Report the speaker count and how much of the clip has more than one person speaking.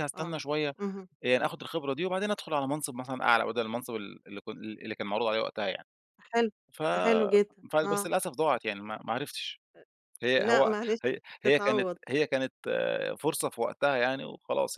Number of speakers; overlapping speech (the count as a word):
two, about 10%